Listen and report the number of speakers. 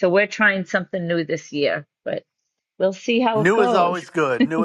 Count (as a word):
two